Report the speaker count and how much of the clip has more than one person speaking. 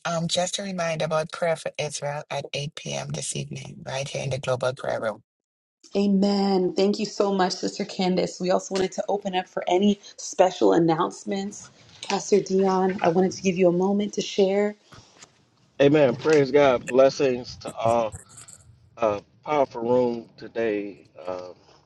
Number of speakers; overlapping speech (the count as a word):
three, no overlap